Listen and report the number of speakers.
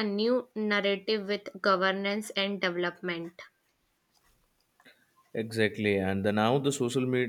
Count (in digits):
2